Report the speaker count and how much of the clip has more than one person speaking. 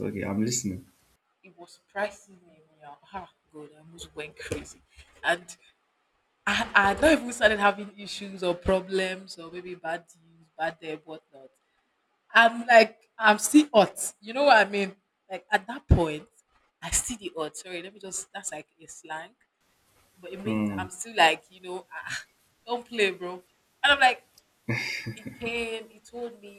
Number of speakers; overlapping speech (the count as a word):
two, about 2%